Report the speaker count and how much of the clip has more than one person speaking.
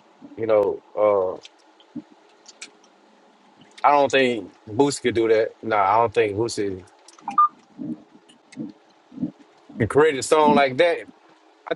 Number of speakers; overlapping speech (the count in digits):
1, no overlap